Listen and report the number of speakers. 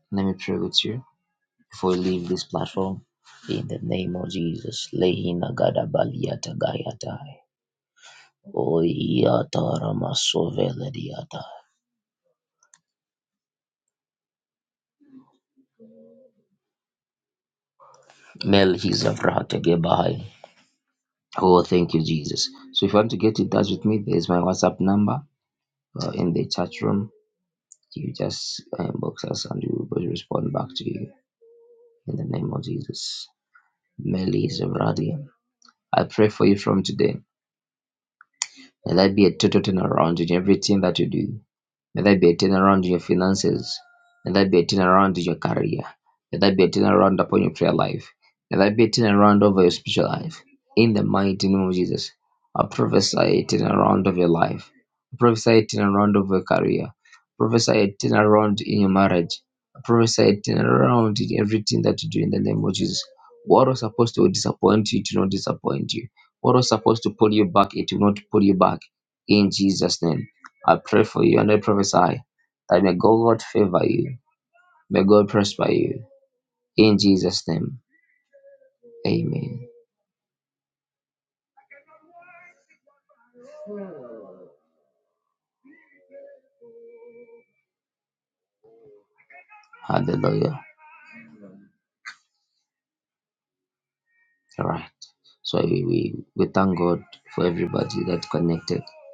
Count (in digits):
1